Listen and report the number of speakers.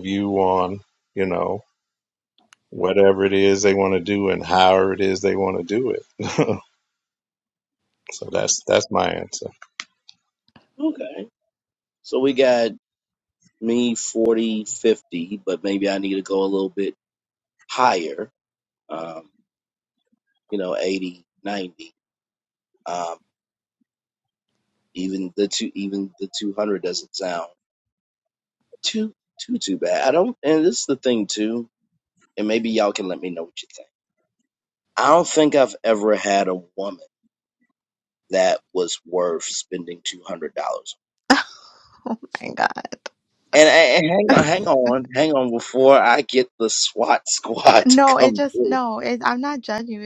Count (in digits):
3